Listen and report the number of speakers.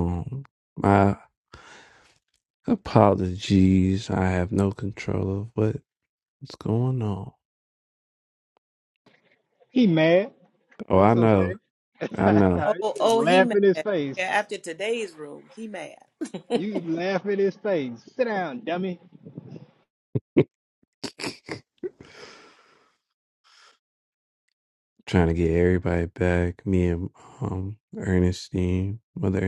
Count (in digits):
3